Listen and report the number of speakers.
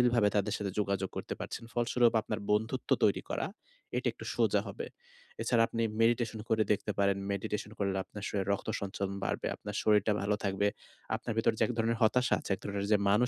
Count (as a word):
one